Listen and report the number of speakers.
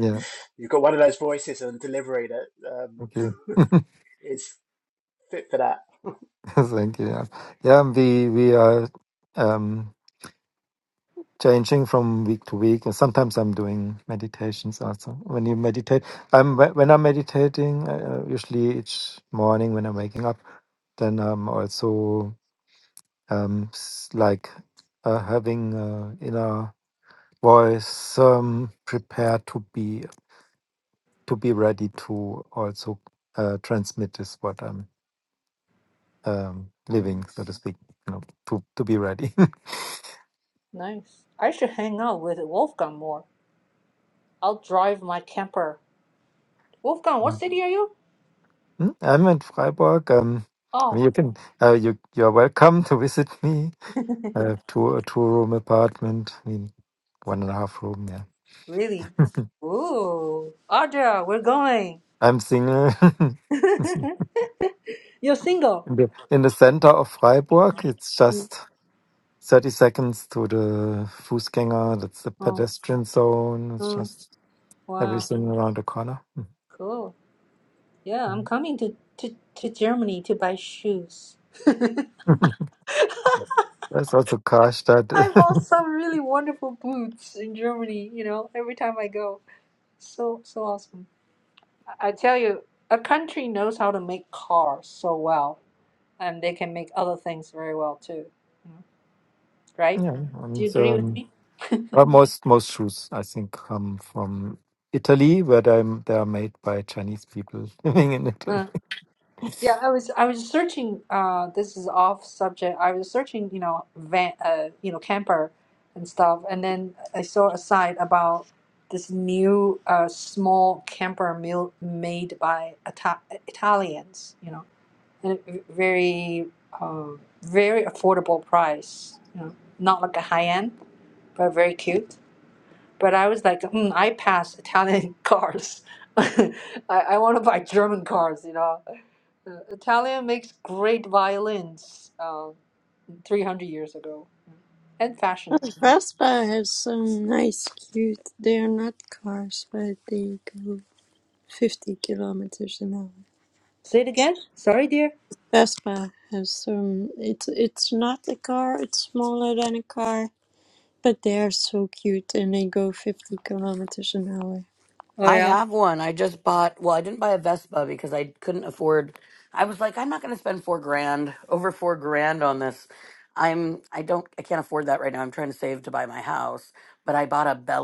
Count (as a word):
five